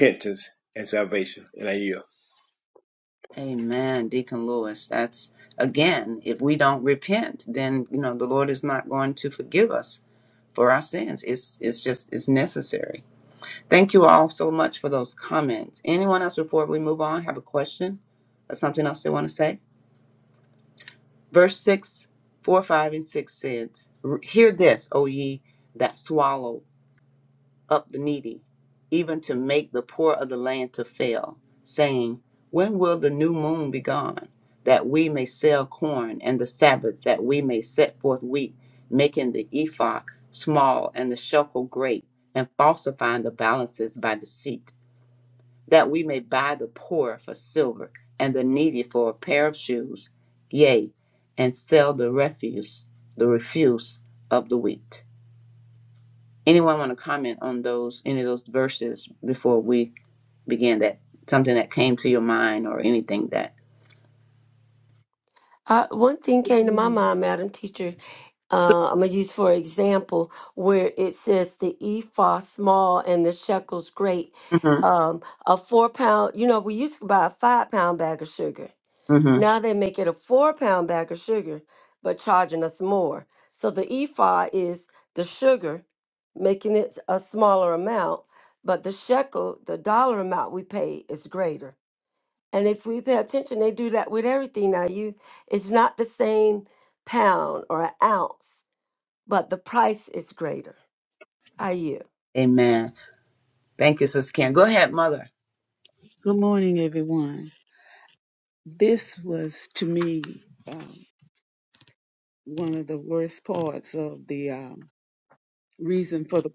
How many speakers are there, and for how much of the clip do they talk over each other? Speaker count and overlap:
four, about 1%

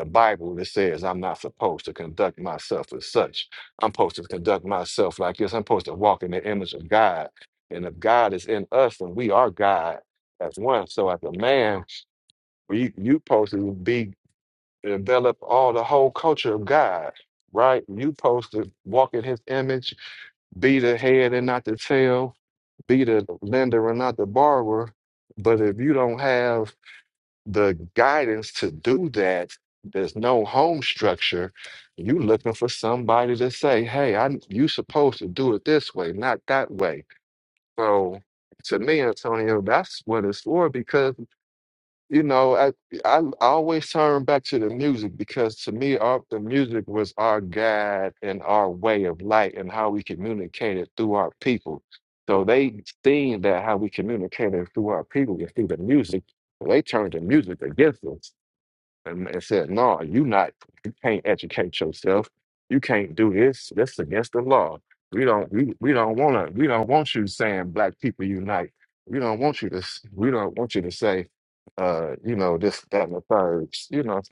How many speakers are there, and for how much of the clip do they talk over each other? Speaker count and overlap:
one, no overlap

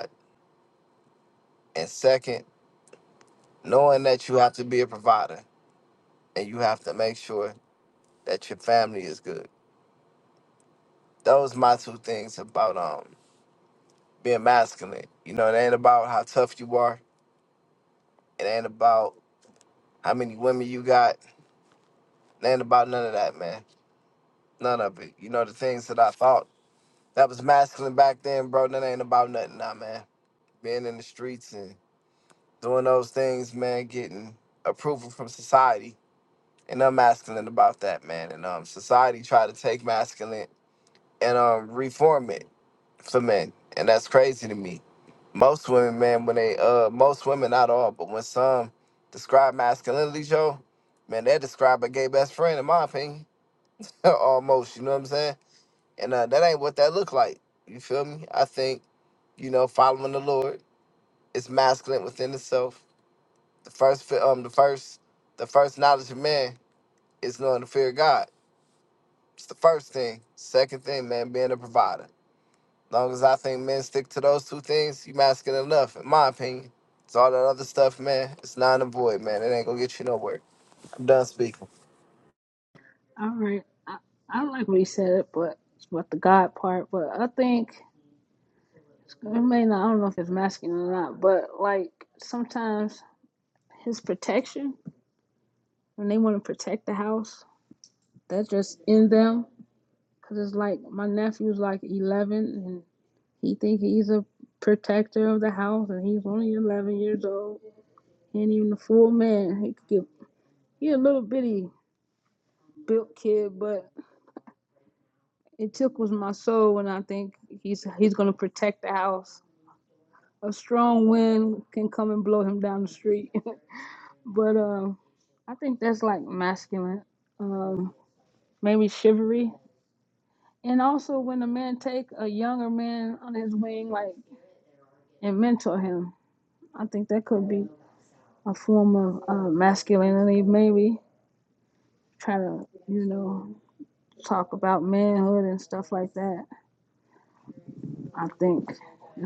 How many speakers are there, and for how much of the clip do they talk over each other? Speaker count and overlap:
two, no overlap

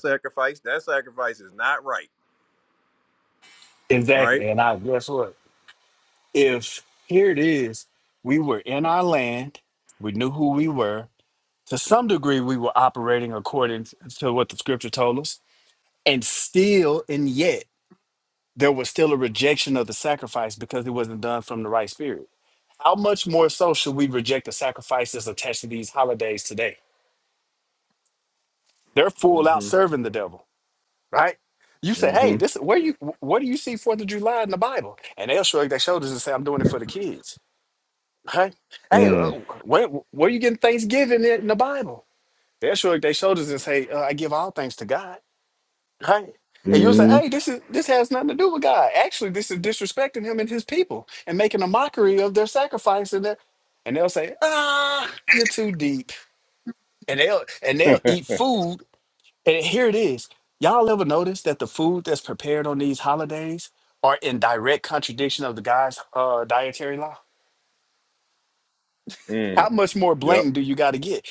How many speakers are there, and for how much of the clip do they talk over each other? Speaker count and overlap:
two, about 3%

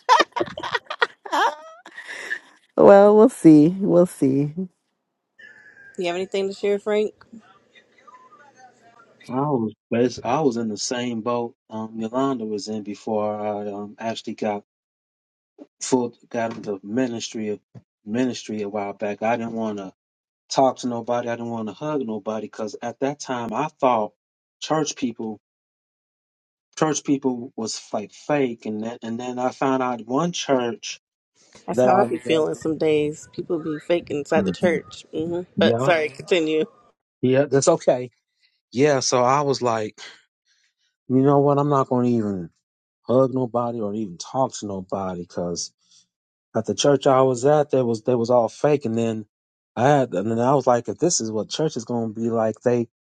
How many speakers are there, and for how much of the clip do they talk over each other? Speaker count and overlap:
three, about 2%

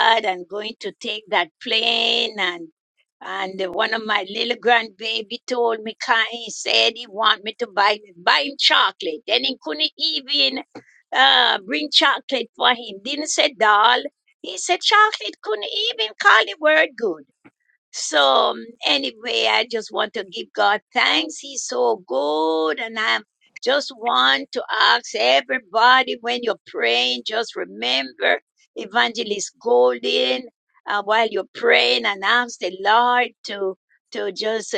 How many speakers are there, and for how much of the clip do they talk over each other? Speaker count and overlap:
one, no overlap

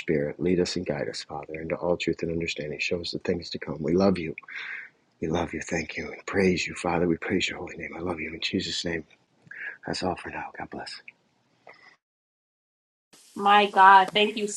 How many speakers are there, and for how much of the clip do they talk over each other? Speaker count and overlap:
two, no overlap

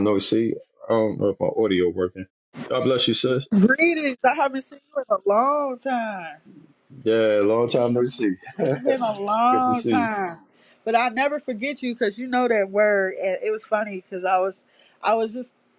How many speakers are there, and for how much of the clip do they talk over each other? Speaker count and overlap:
two, about 5%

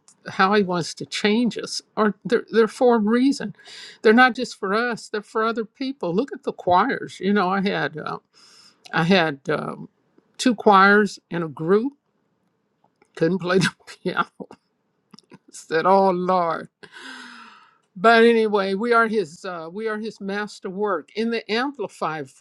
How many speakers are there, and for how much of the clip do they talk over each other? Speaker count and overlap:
one, no overlap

